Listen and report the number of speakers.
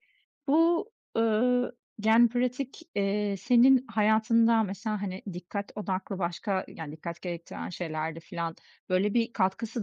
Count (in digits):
1